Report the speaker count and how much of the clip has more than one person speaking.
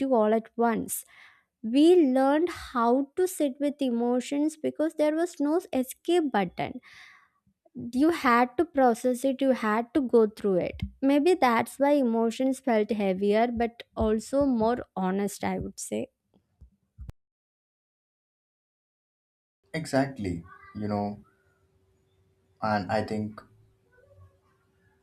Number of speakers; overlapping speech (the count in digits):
2, no overlap